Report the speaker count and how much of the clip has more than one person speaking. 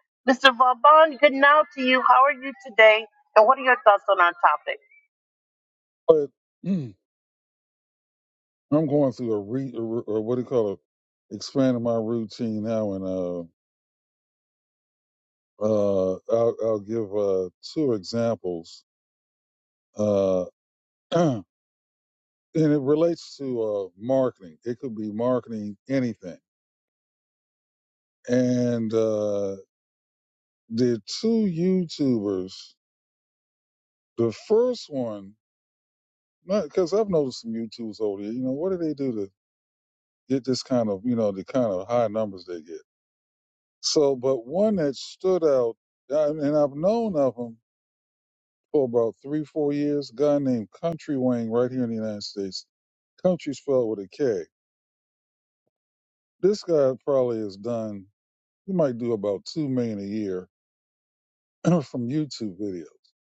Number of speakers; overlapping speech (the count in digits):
2, no overlap